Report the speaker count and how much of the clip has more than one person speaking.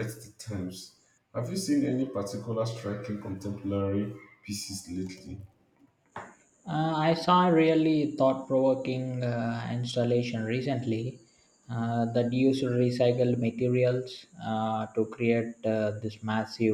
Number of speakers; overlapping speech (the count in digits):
2, no overlap